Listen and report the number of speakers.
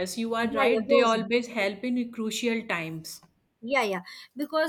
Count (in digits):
2